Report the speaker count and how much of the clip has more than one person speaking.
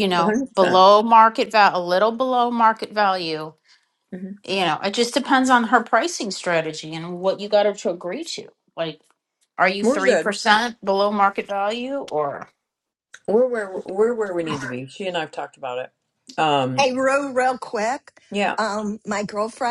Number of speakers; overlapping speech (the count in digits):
3, about 7%